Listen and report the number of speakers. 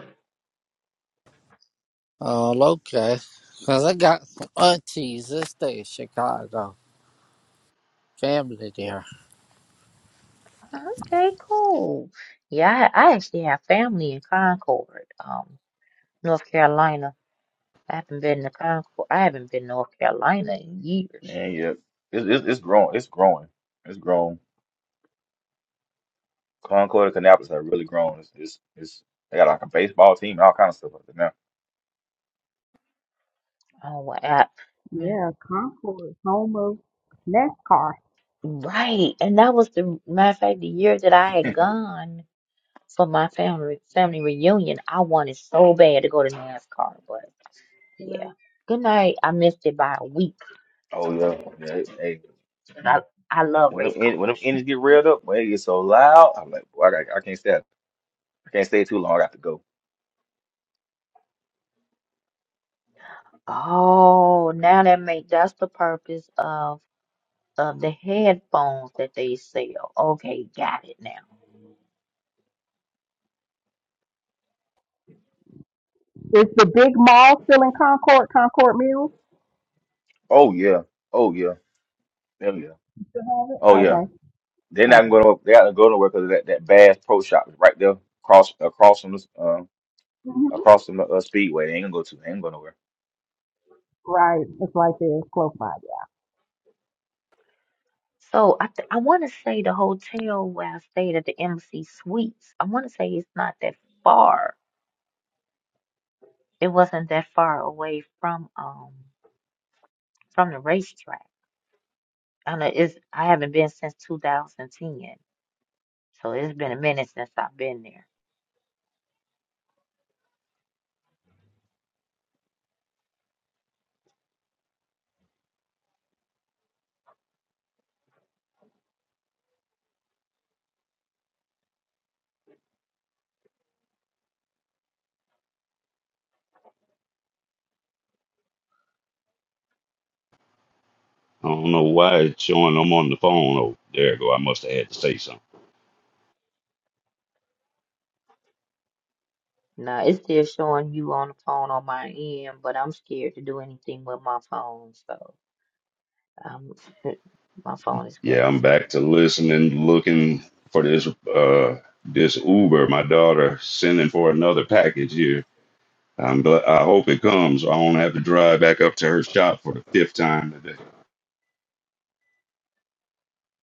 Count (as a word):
five